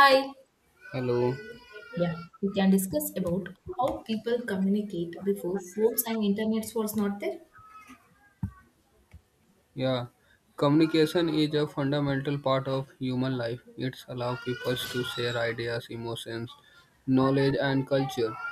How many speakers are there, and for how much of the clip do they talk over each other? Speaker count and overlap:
2, no overlap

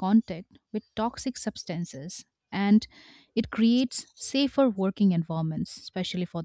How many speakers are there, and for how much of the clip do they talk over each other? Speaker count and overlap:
1, no overlap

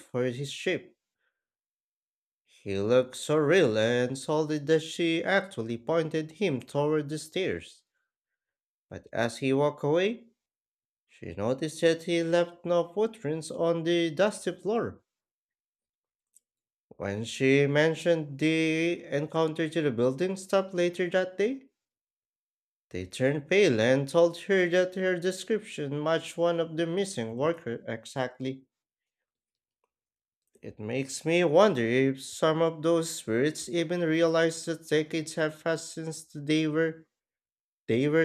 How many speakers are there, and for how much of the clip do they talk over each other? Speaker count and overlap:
1, no overlap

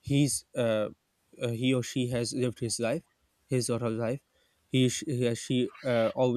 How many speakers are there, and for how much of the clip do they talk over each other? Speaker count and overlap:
1, no overlap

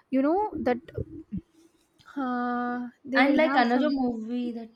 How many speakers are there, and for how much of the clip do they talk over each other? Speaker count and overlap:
2, about 16%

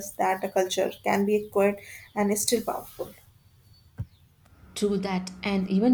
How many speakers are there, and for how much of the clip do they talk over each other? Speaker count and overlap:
2, no overlap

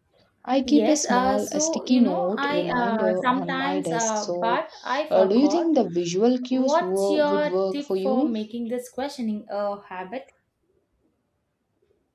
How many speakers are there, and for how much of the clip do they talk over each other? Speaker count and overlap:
2, about 54%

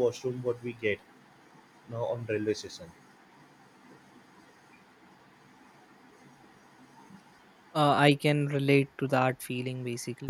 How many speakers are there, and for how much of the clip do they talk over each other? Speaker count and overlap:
2, no overlap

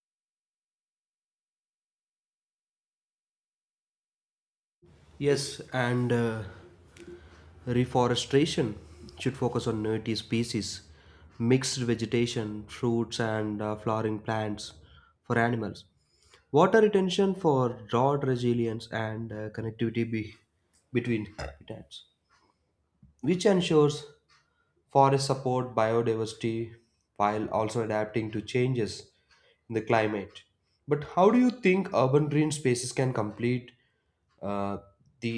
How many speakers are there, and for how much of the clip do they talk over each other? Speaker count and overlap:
1, no overlap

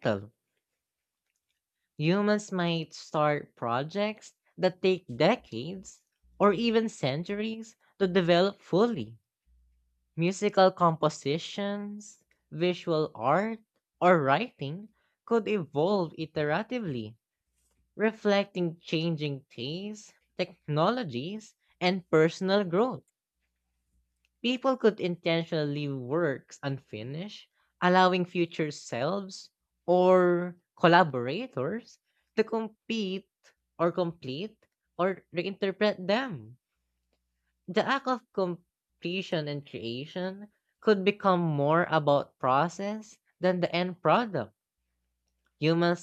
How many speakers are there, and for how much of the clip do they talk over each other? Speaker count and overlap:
1, no overlap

